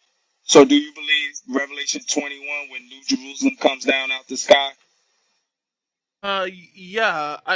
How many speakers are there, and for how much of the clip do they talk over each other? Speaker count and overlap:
2, no overlap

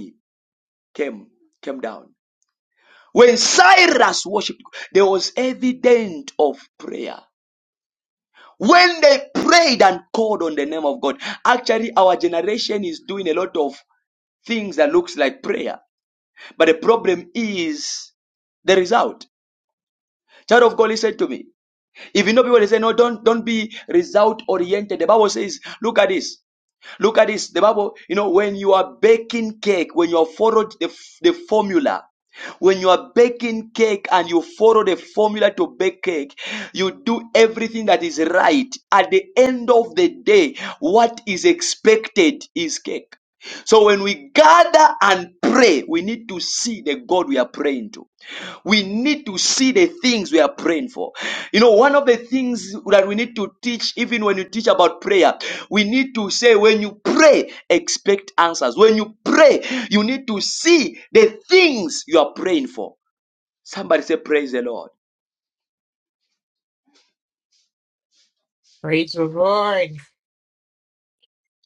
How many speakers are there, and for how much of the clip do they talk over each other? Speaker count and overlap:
2, no overlap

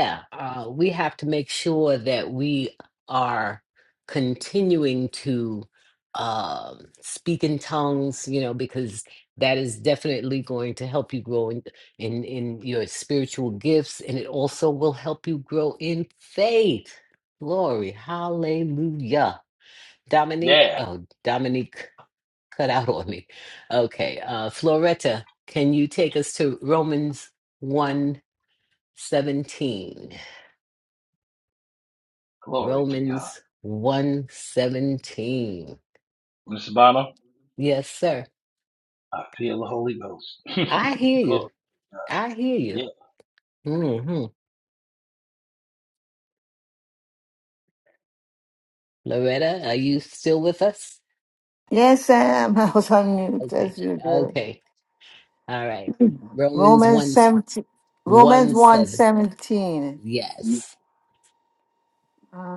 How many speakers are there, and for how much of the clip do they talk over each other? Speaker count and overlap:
3, about 5%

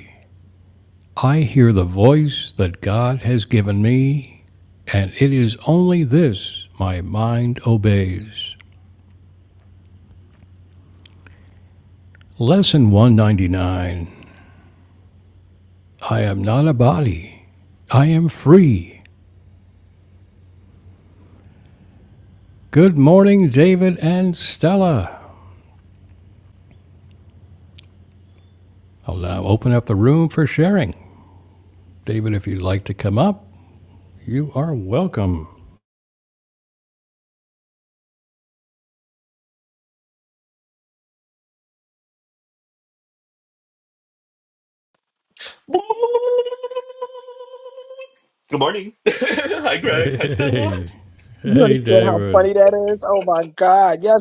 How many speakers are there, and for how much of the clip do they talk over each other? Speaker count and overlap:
3, about 4%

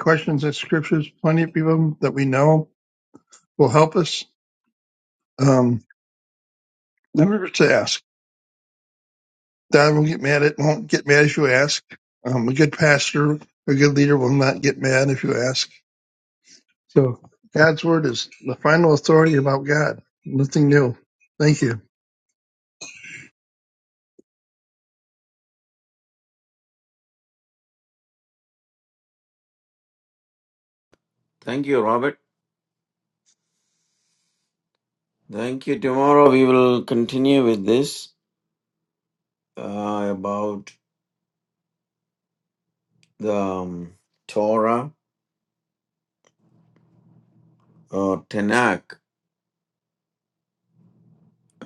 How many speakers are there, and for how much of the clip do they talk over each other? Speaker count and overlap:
2, no overlap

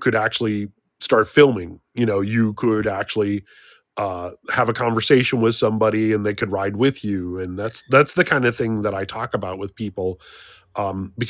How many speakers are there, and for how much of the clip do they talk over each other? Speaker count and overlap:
1, no overlap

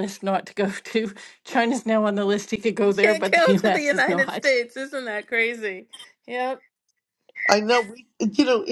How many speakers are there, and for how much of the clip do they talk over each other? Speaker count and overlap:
3, about 17%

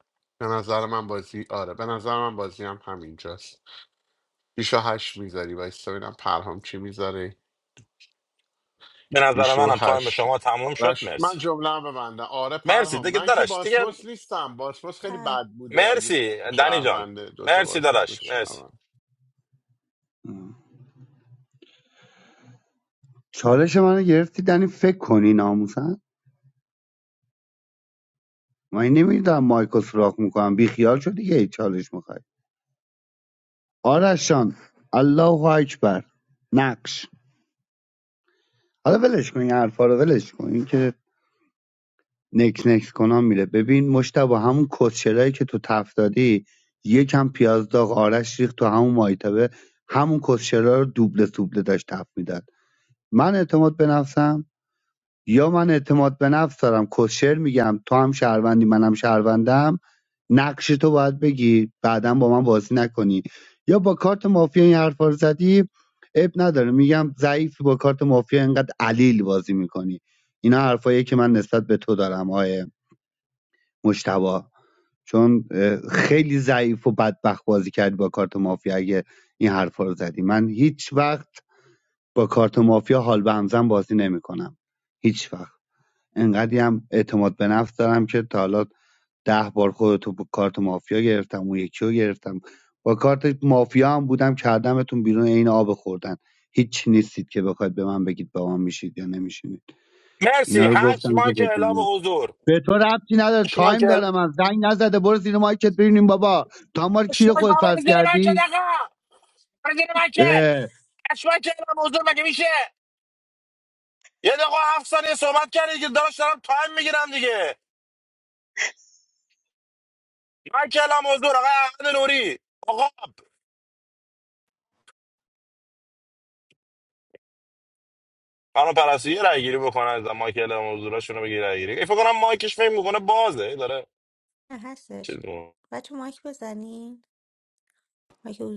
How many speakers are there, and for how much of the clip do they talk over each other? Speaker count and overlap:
4, about 7%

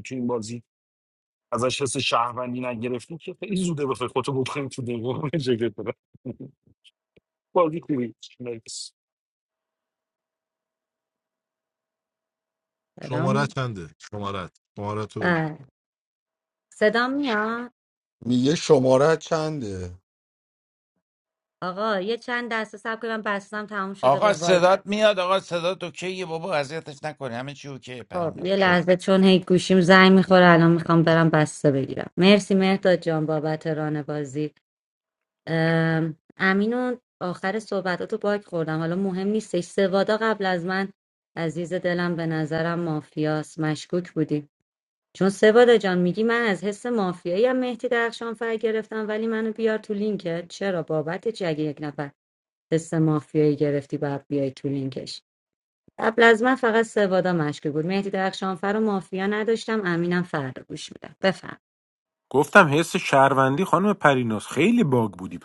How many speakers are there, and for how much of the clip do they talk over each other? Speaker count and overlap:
6, about 3%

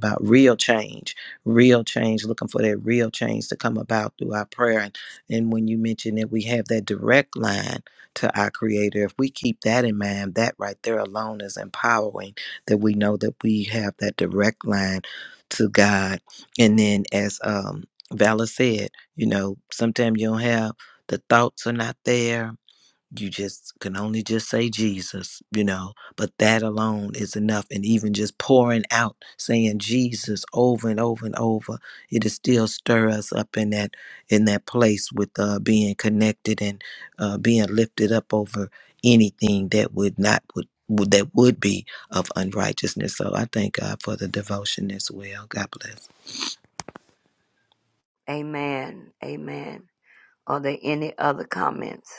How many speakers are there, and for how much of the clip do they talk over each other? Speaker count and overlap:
2, no overlap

